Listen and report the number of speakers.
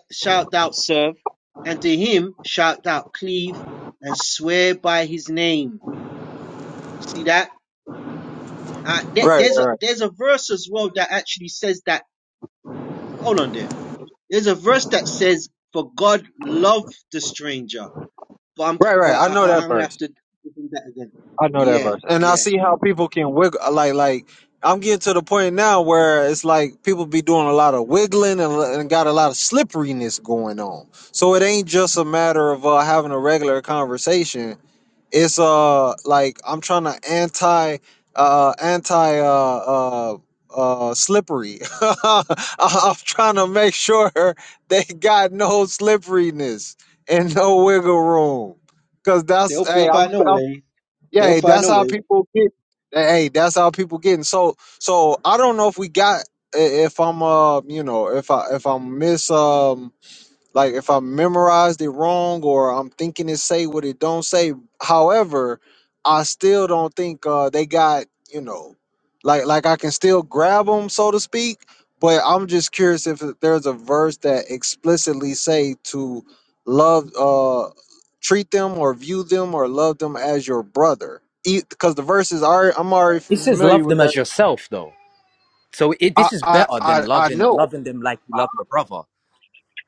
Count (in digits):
3